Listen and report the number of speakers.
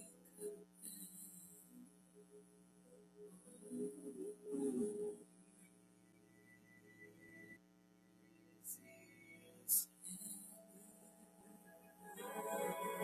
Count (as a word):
zero